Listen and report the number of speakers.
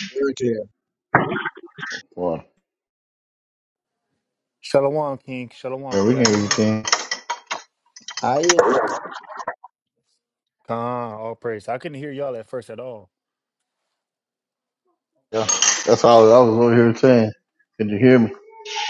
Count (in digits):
3